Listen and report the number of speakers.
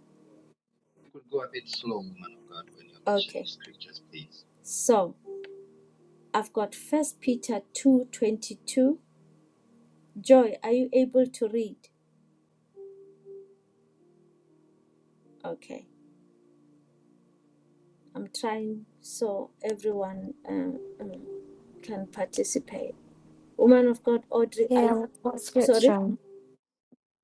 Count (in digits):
3